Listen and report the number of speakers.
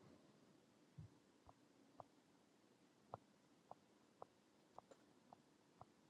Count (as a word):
zero